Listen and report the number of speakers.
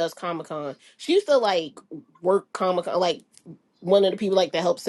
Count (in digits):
1